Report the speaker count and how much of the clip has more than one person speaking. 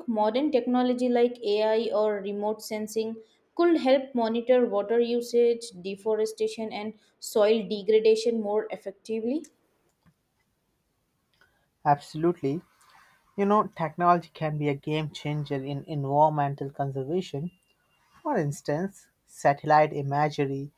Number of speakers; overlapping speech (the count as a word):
two, no overlap